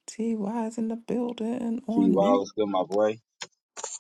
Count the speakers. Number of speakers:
2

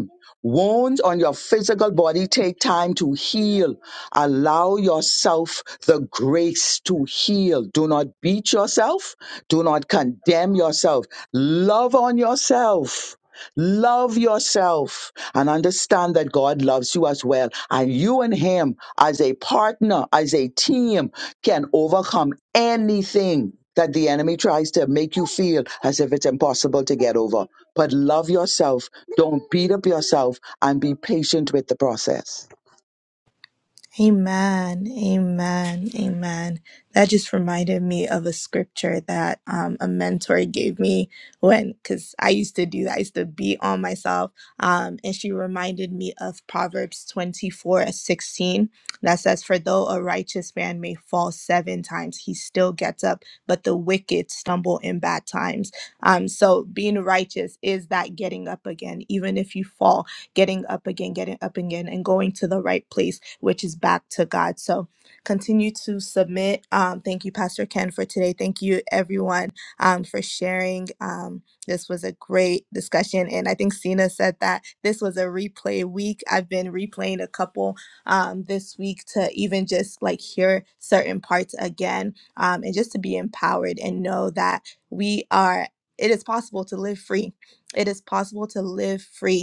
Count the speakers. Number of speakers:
2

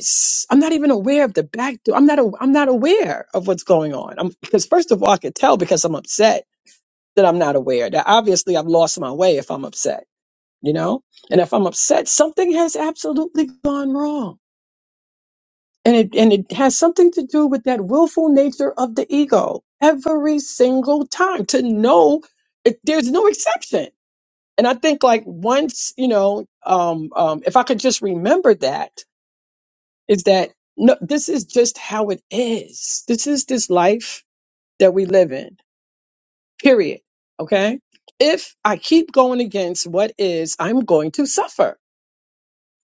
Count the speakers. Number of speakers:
1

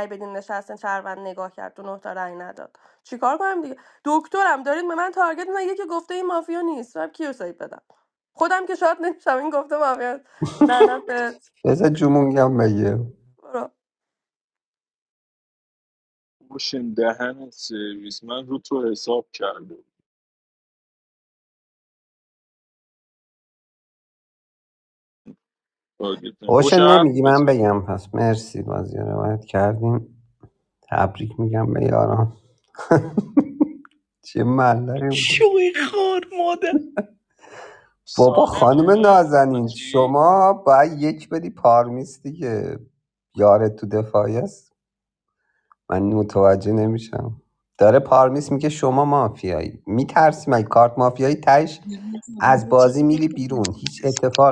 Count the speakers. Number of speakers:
5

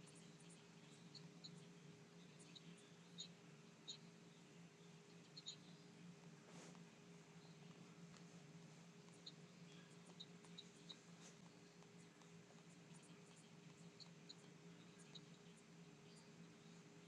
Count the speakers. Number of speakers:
0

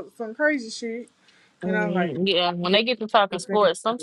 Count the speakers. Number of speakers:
2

